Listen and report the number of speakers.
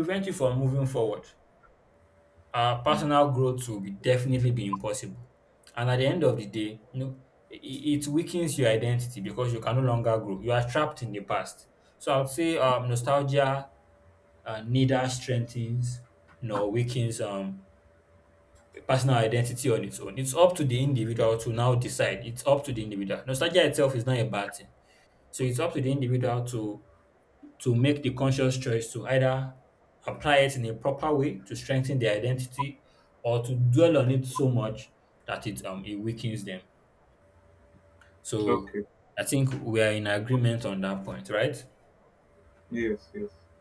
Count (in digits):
2